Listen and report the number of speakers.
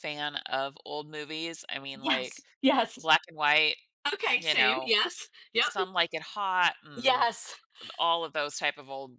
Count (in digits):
2